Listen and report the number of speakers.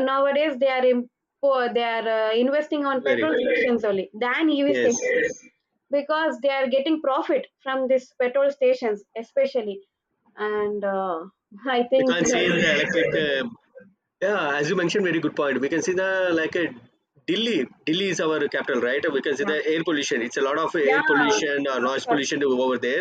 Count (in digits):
2